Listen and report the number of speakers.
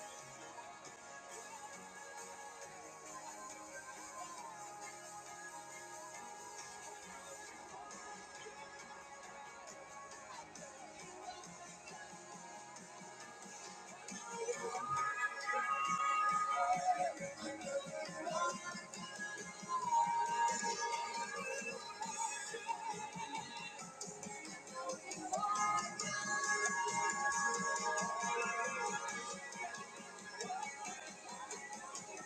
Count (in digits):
0